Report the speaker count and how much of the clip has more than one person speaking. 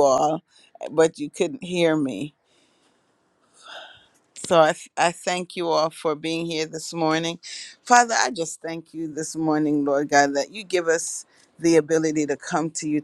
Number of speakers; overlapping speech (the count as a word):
one, no overlap